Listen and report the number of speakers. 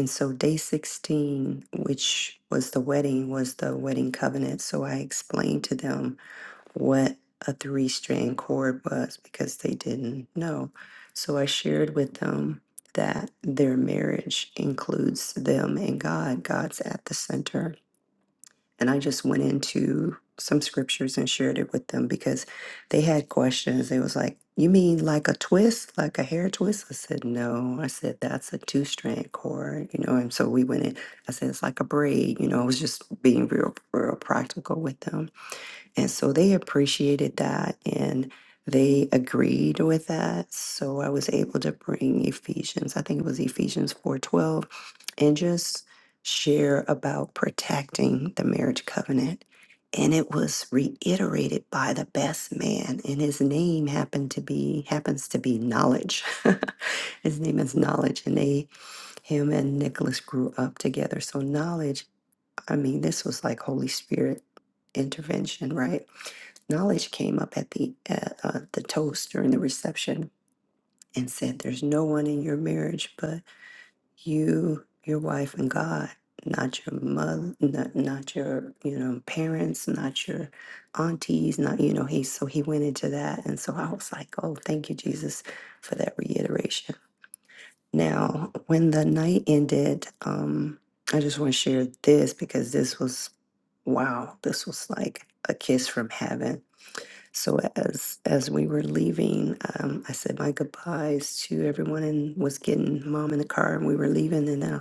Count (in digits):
1